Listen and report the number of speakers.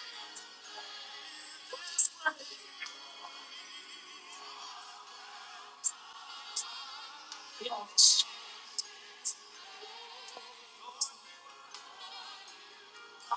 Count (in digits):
0